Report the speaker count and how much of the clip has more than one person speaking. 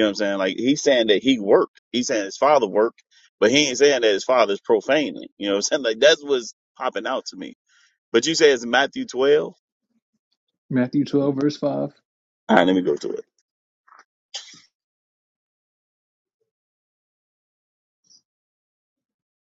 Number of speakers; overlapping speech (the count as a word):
two, no overlap